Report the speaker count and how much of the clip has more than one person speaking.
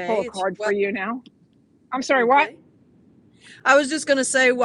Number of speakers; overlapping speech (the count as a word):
two, about 22%